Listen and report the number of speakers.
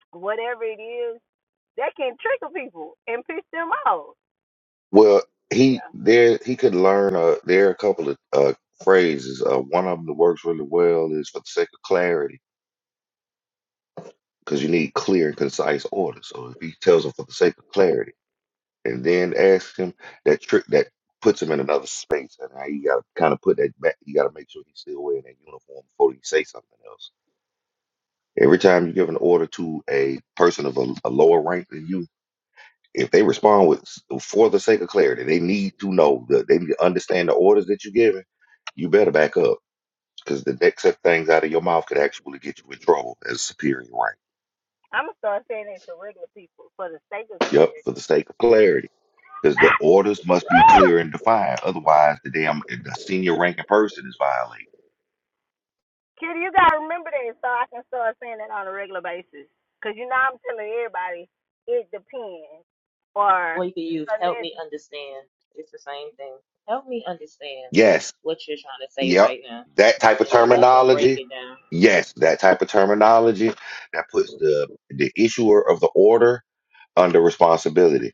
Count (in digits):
3